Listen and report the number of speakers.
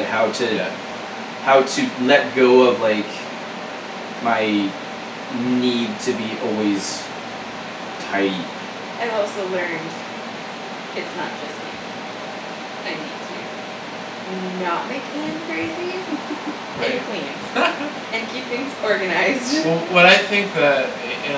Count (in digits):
3